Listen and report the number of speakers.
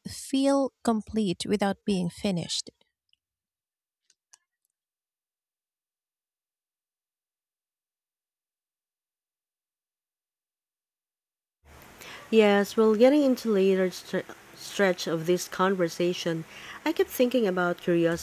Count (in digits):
2